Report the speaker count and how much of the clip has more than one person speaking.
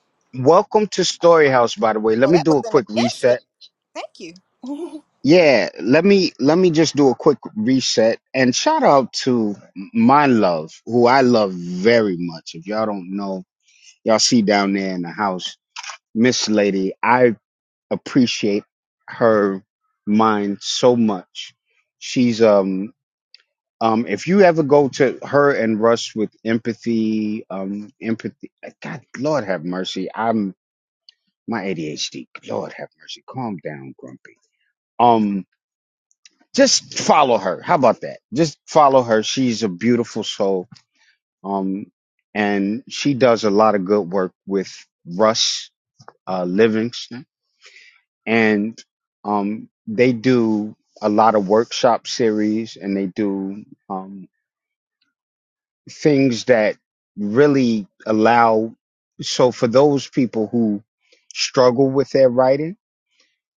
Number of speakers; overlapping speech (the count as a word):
two, about 2%